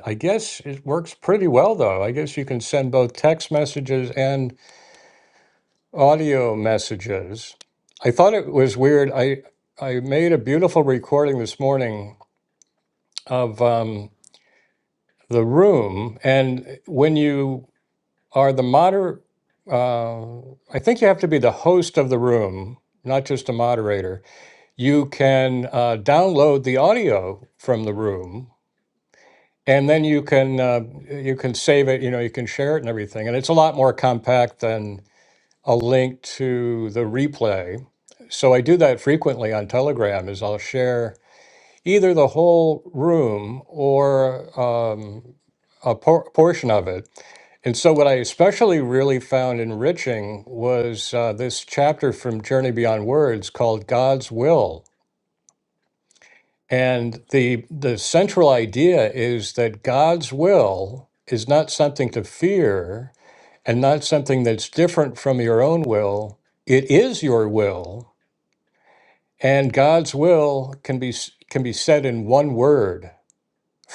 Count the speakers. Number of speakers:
one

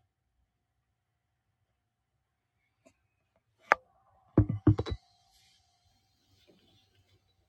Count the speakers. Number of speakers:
zero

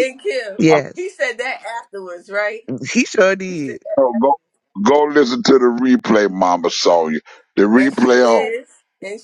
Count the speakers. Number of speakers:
three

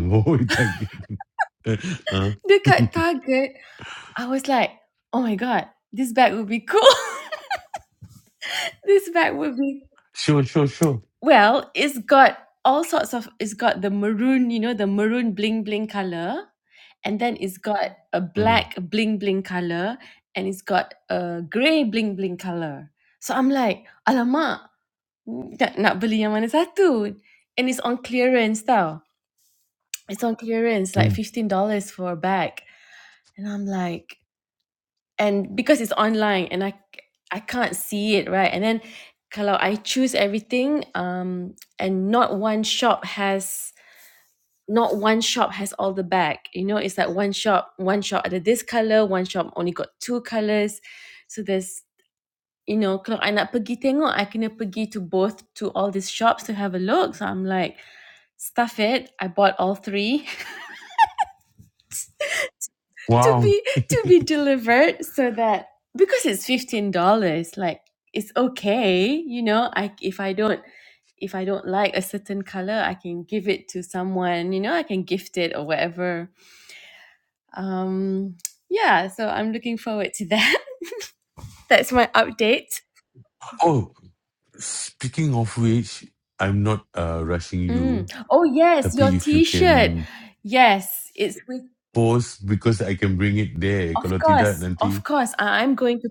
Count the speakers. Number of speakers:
two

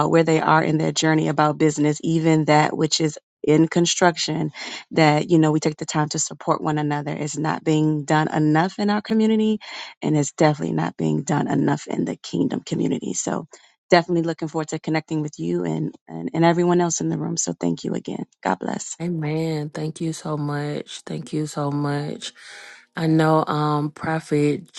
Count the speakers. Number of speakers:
two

